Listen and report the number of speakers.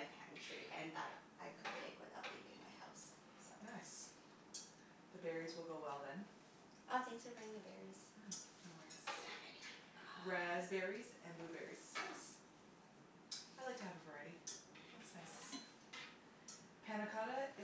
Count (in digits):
2